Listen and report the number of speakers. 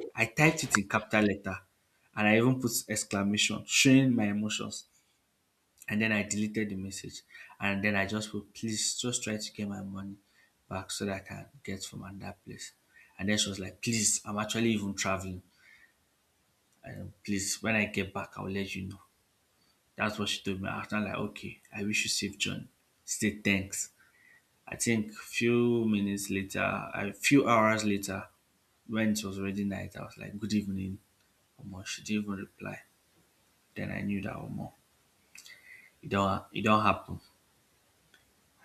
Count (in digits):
1